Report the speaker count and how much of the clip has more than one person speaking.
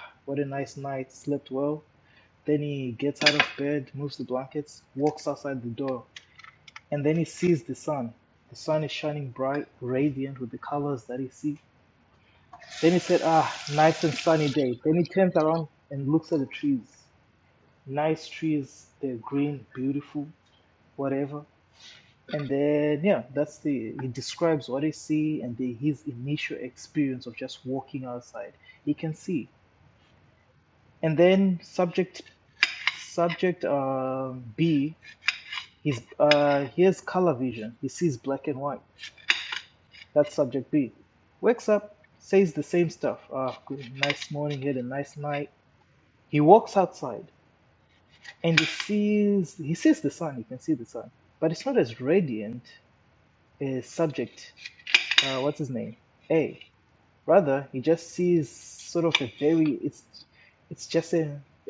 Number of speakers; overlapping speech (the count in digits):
1, no overlap